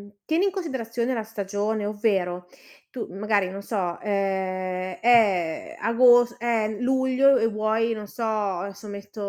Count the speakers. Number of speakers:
1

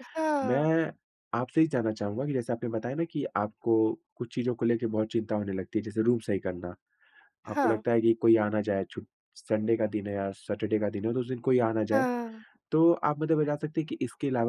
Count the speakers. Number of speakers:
2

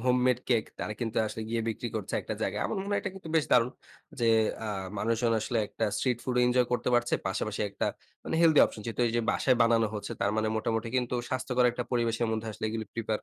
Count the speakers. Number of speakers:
1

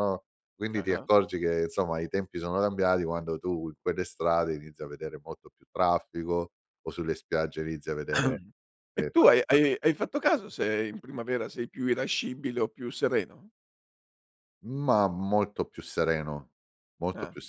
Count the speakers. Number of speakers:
2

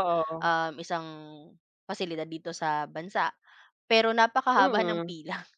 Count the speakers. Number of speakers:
2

